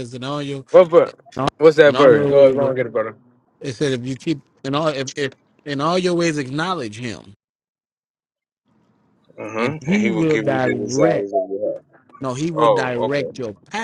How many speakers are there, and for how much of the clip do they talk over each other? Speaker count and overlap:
3, about 23%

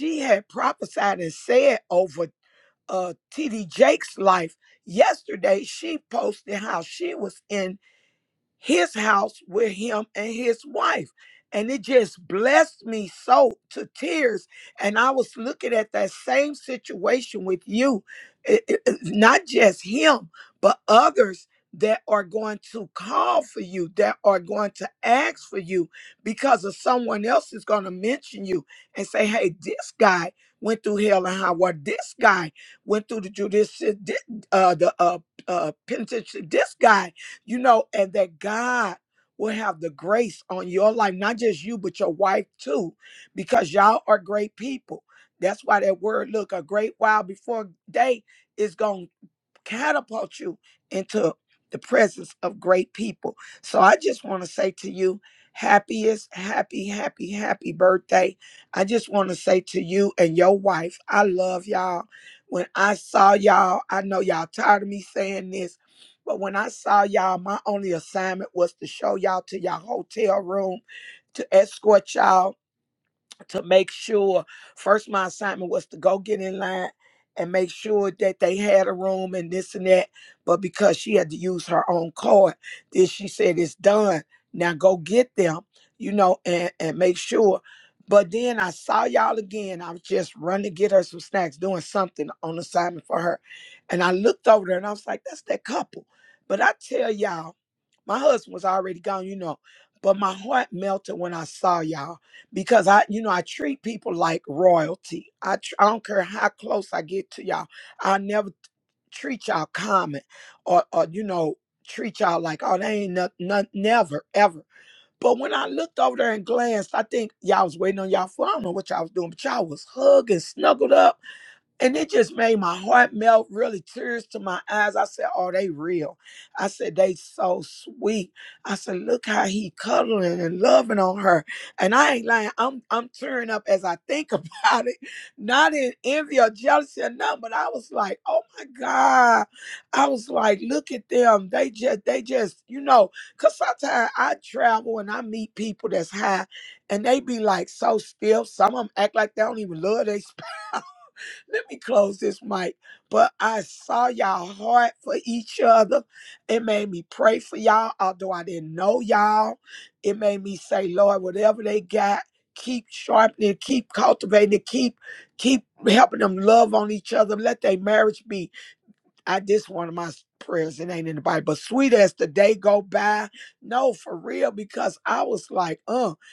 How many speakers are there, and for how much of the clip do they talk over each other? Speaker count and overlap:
1, no overlap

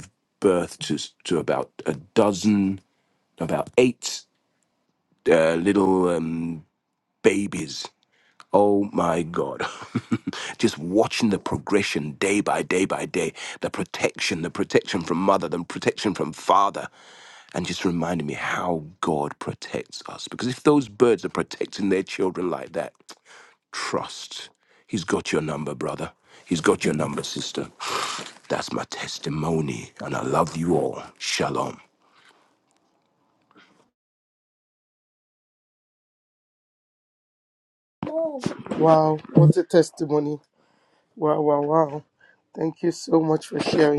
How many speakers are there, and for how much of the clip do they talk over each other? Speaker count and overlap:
2, no overlap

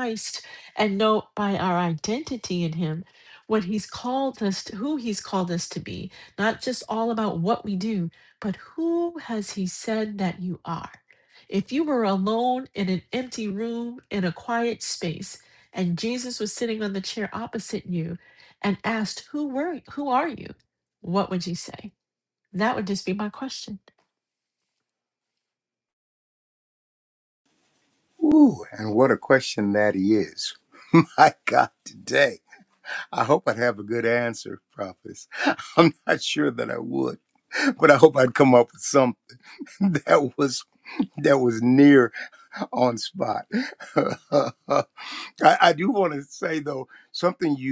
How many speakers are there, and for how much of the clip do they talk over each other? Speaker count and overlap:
2, no overlap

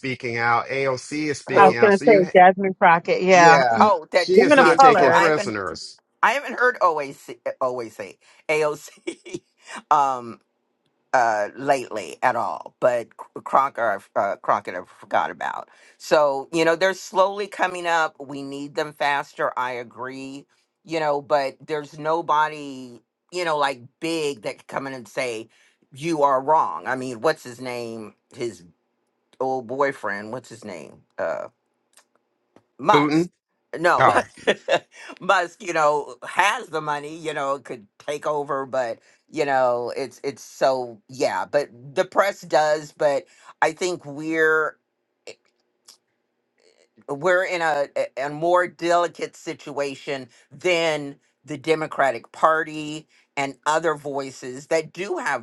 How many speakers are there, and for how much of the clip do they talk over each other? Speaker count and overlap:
3, about 6%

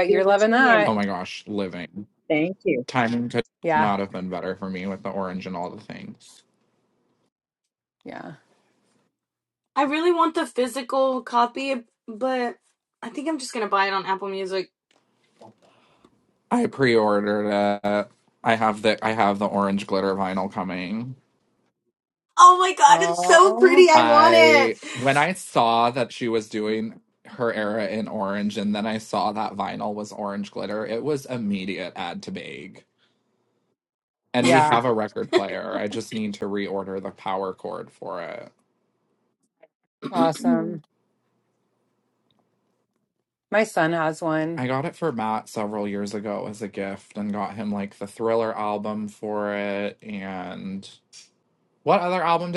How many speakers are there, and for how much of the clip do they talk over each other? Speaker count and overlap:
4, about 6%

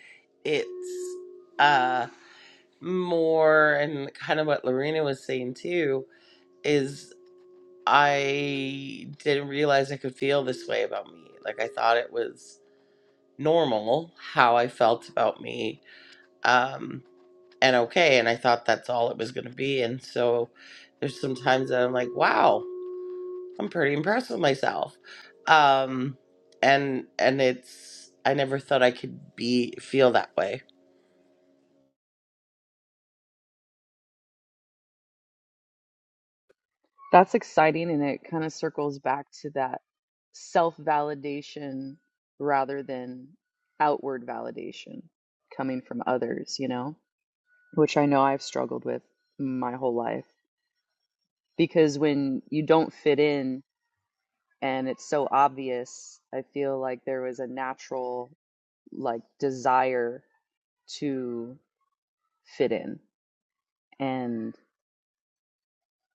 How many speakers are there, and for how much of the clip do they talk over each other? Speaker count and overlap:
2, no overlap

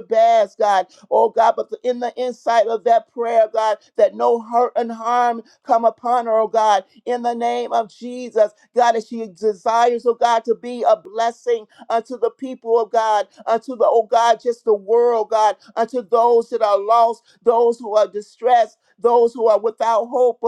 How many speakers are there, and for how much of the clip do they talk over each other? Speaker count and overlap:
1, no overlap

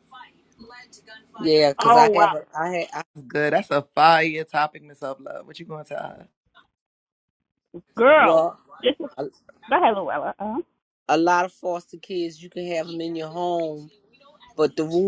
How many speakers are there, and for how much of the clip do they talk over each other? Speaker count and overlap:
3, about 5%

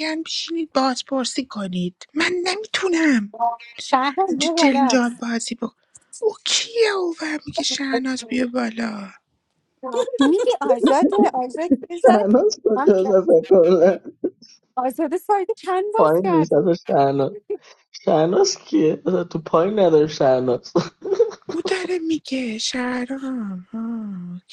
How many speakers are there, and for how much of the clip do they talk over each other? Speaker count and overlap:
3, about 7%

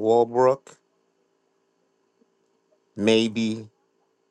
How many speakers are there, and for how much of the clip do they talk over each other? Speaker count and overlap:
1, no overlap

